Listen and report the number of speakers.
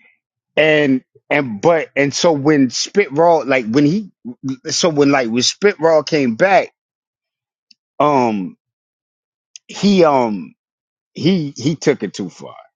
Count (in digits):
1